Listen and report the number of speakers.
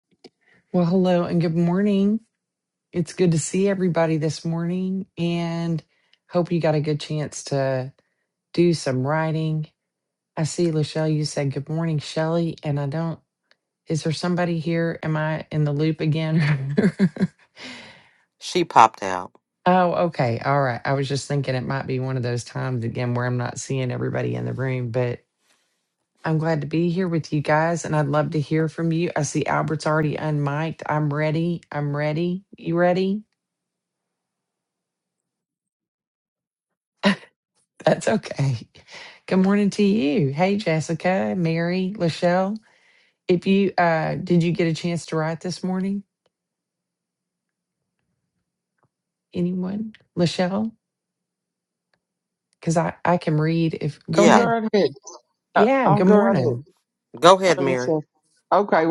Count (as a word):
three